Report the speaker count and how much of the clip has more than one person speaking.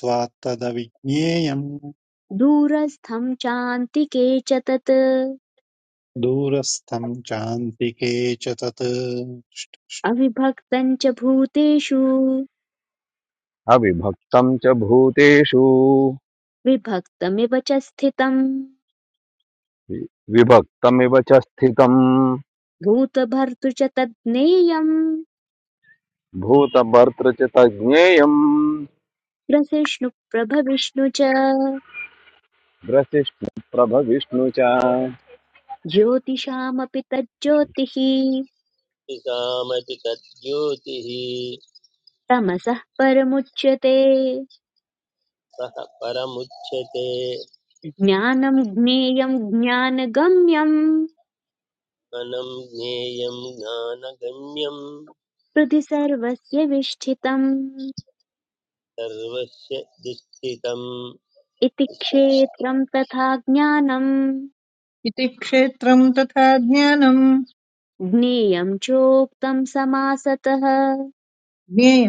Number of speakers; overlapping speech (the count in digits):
5, about 1%